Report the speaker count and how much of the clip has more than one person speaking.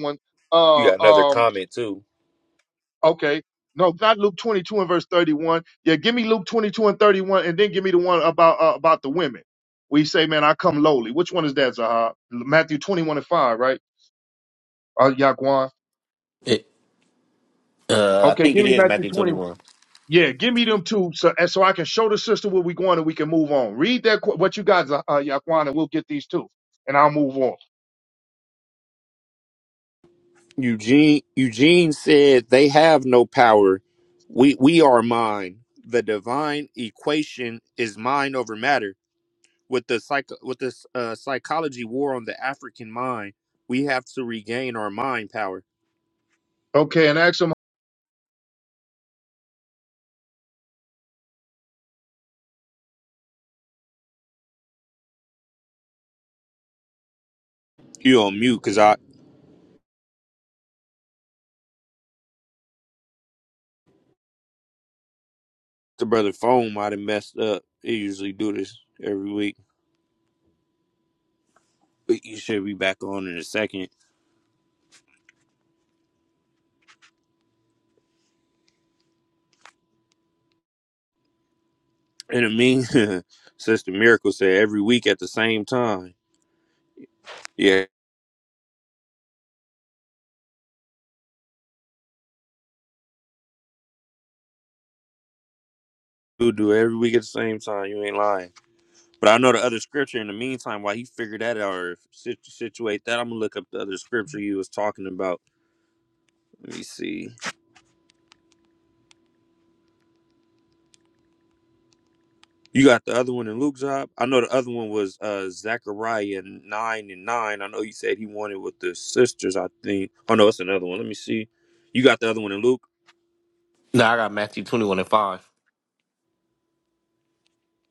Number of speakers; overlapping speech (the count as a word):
three, about 1%